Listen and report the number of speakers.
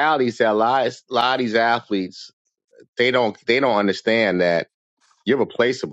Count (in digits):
1